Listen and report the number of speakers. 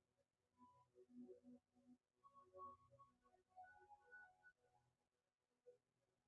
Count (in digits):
0